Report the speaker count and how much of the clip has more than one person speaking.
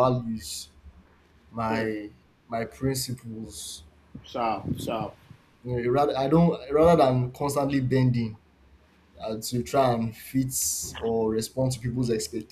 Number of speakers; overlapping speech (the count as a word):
two, about 2%